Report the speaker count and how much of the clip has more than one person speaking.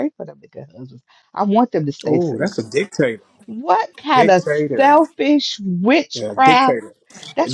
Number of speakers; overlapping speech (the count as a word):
two, about 23%